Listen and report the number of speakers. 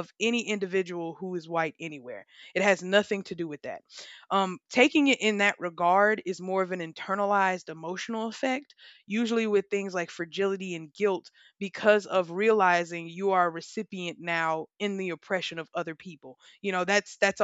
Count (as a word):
one